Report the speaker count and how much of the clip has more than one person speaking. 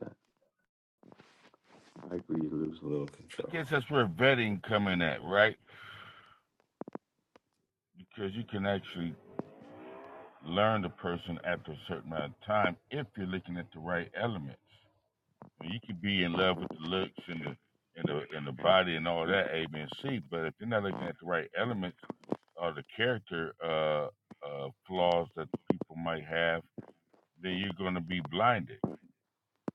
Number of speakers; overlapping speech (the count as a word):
two, under 1%